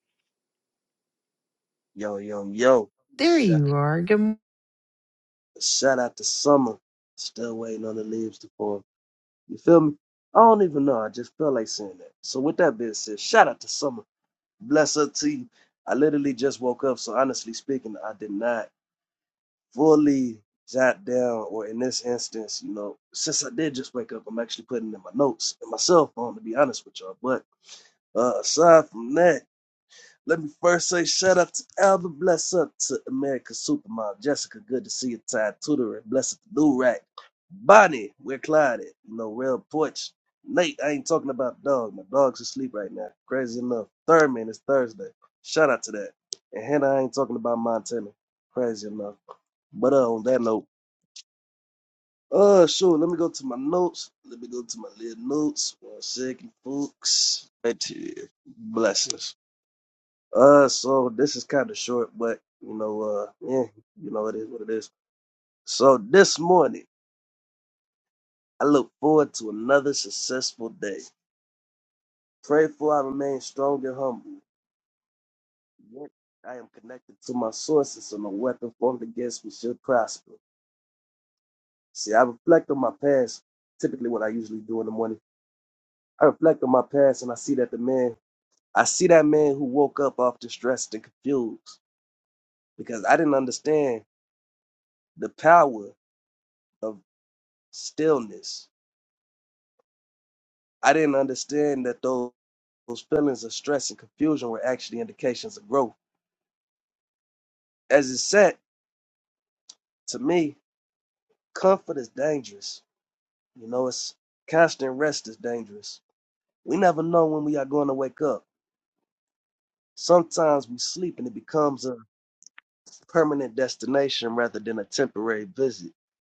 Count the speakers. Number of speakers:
two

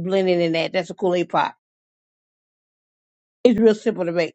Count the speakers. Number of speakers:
one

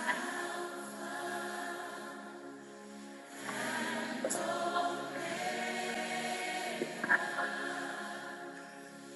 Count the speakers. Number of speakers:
zero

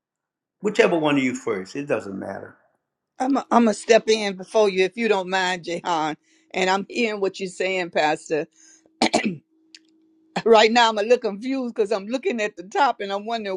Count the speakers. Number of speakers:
two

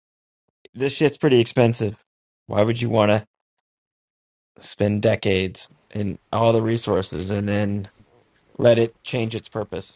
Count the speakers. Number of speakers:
one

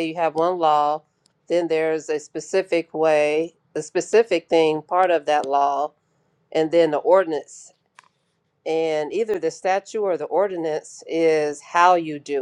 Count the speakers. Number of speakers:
one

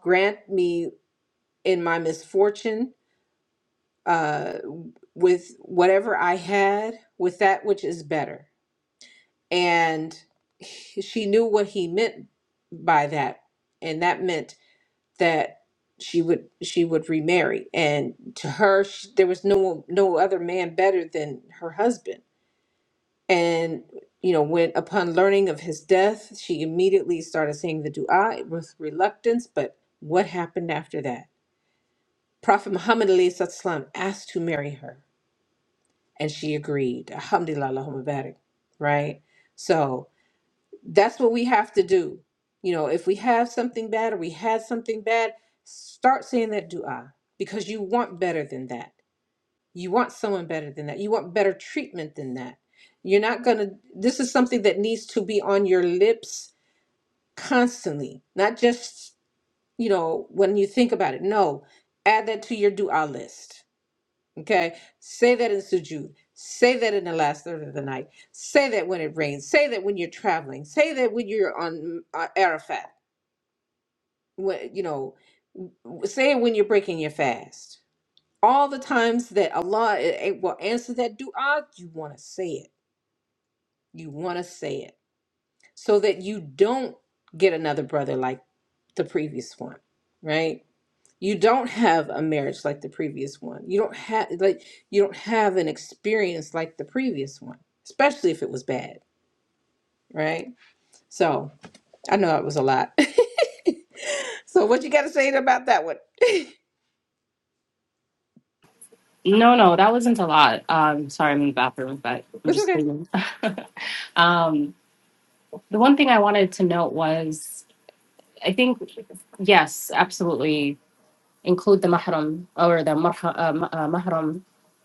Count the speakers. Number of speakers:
two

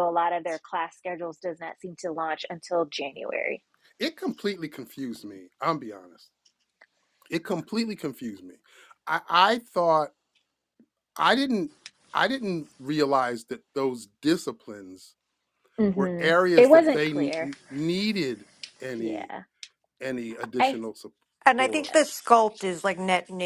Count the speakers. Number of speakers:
three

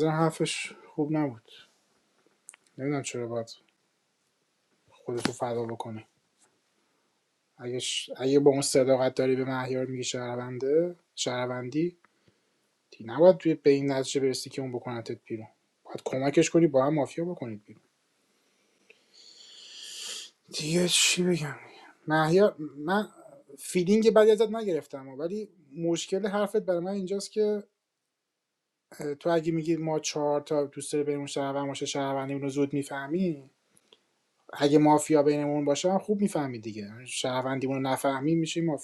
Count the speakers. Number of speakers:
one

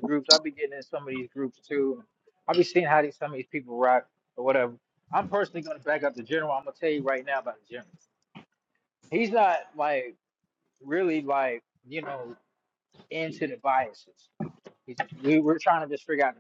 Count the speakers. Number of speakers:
one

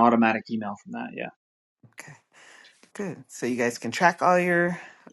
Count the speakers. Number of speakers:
two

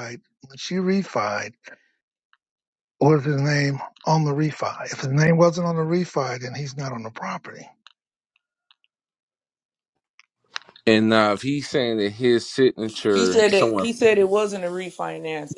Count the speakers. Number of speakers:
three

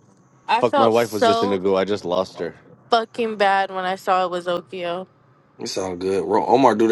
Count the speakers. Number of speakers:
three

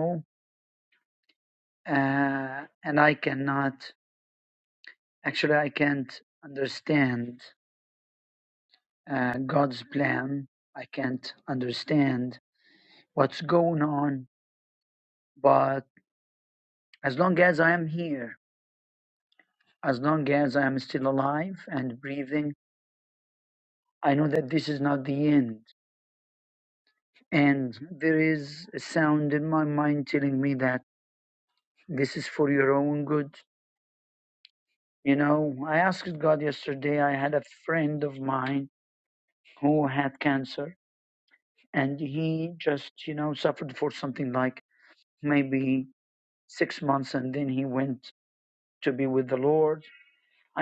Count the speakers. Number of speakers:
one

